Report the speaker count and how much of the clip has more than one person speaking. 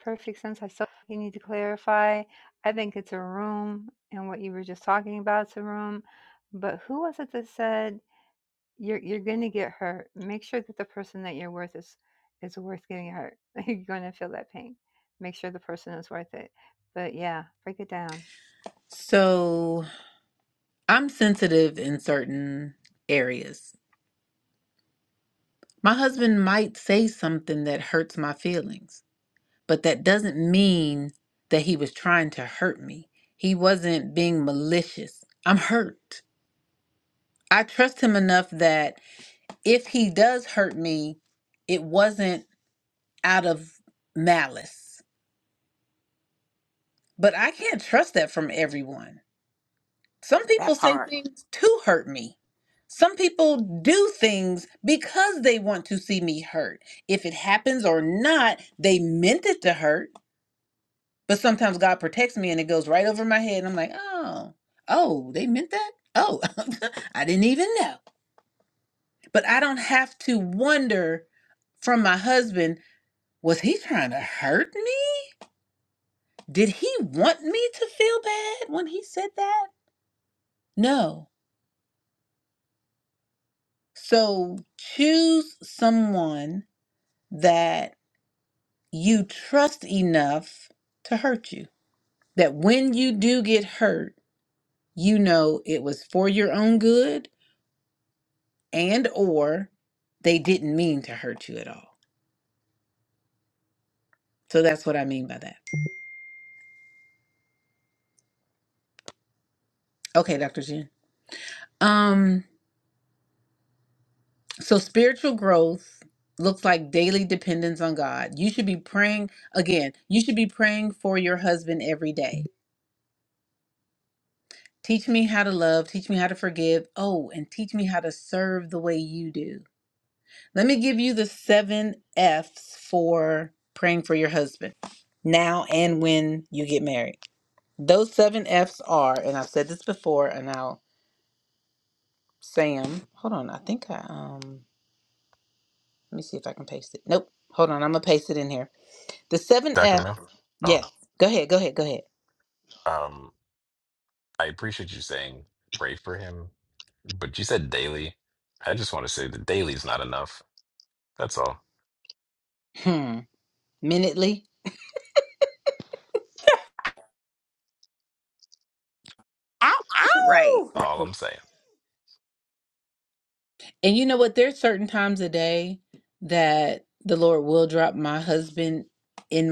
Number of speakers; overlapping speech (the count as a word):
four, about 1%